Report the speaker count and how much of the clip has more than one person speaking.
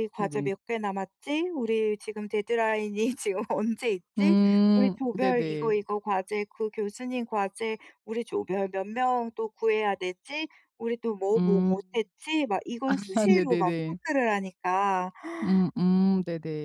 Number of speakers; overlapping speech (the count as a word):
two, about 16%